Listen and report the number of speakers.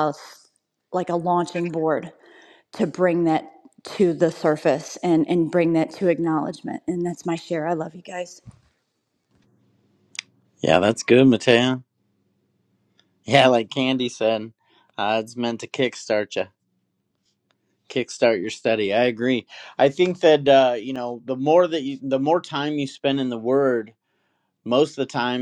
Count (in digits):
2